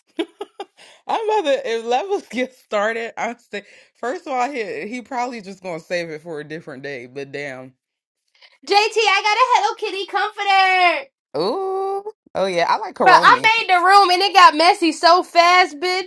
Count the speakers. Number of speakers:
2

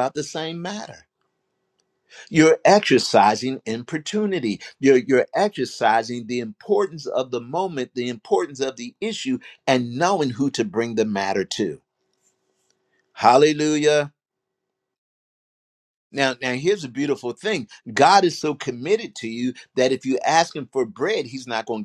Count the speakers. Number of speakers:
1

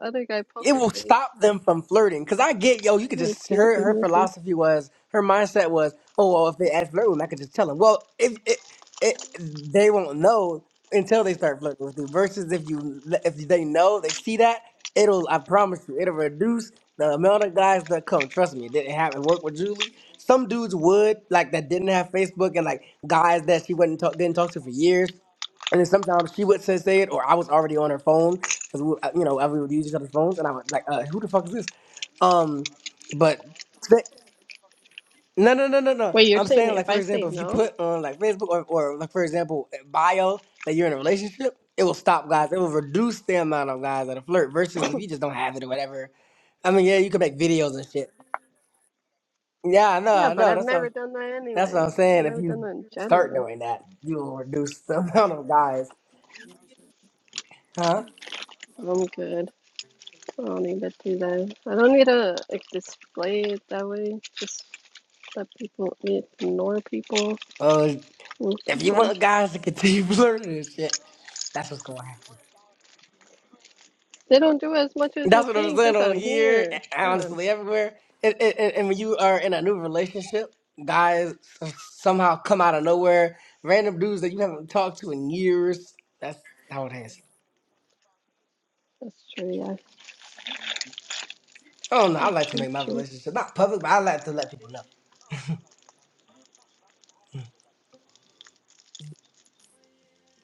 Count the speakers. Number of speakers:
2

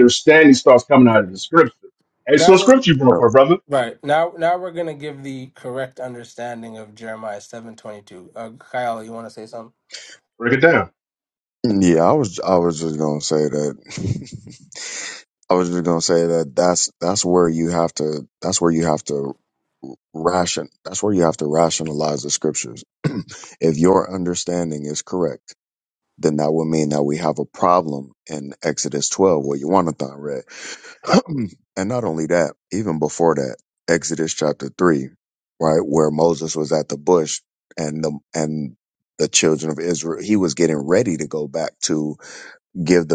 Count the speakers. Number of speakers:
3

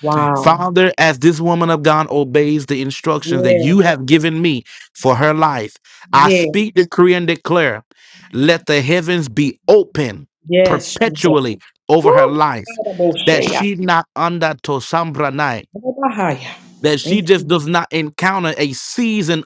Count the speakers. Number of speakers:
2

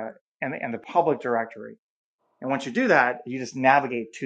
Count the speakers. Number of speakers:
1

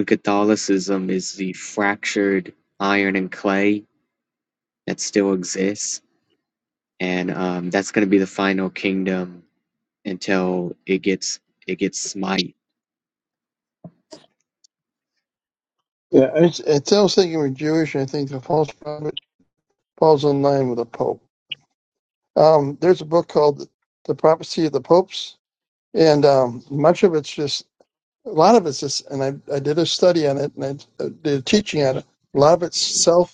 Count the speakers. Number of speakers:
2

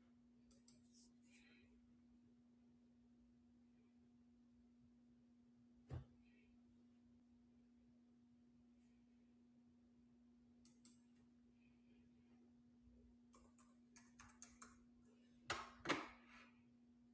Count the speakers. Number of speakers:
0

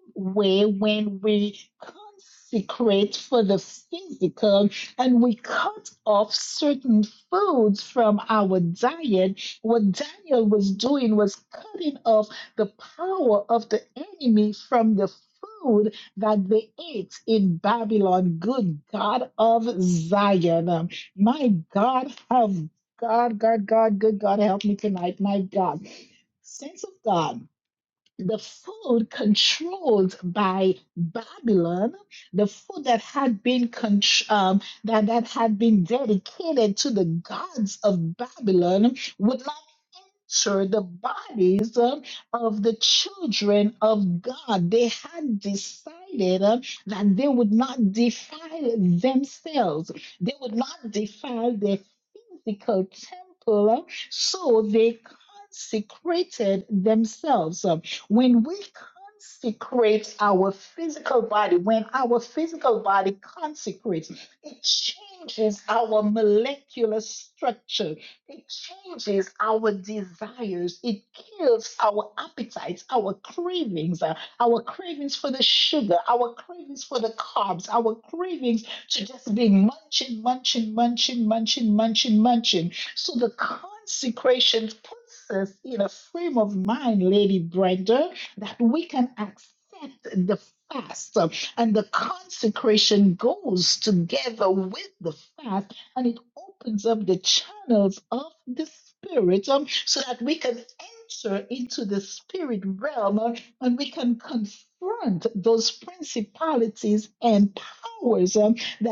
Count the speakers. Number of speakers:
1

